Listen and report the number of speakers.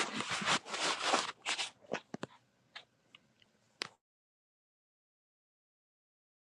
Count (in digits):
0